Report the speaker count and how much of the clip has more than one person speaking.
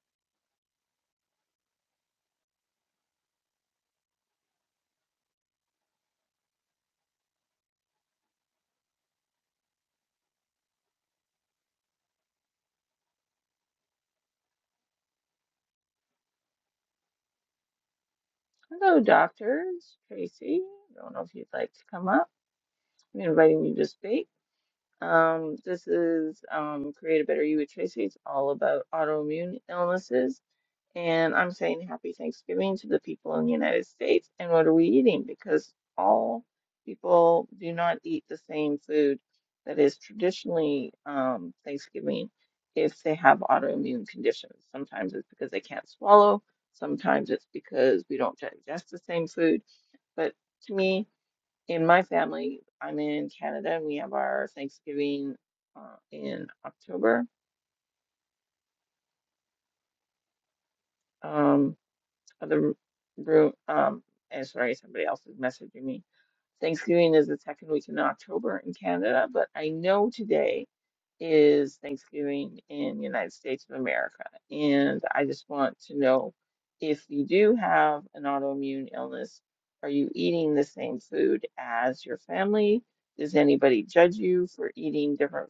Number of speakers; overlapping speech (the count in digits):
1, no overlap